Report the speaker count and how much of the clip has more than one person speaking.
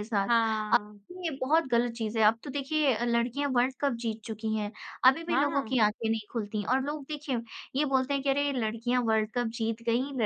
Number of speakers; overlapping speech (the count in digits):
2, about 4%